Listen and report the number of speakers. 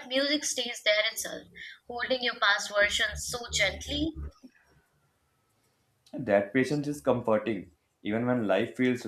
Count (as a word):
two